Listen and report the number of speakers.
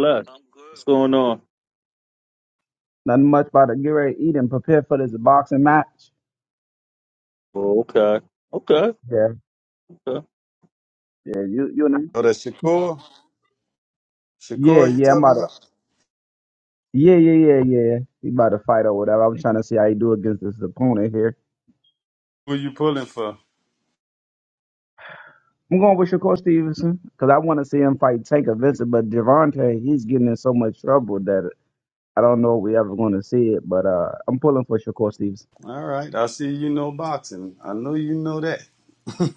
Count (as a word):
three